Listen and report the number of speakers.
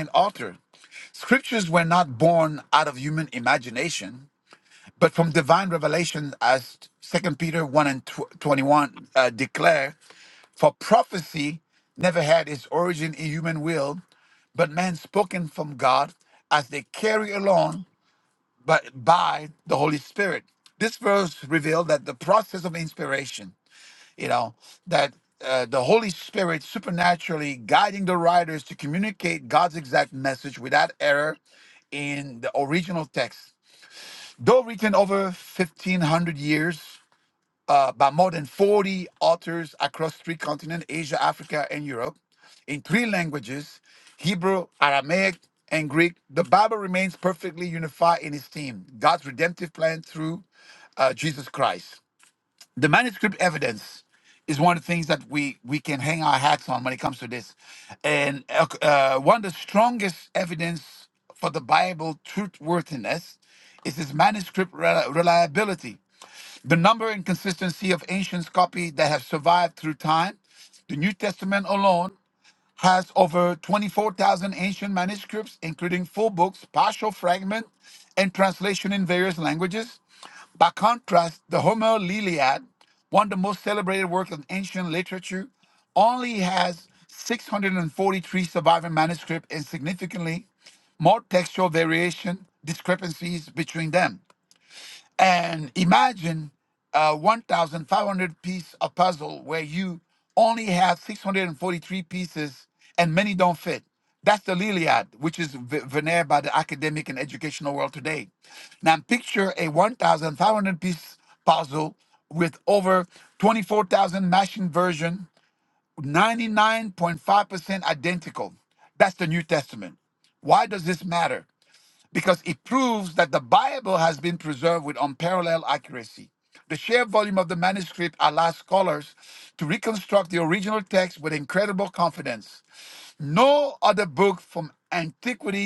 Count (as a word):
one